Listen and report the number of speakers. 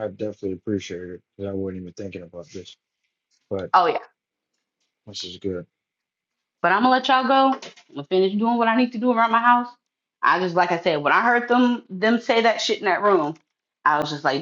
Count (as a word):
two